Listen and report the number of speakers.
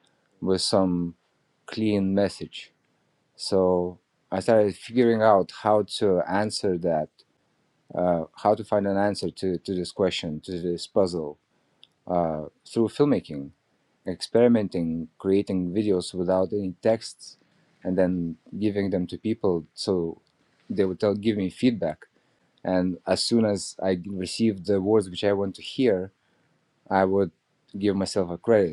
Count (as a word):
one